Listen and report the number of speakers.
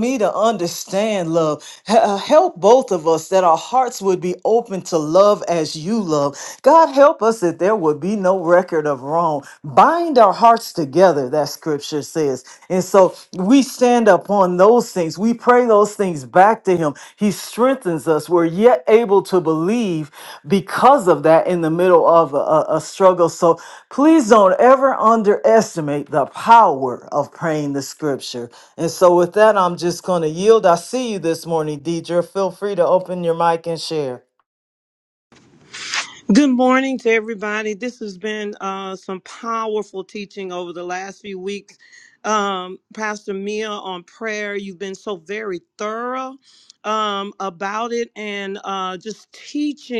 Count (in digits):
2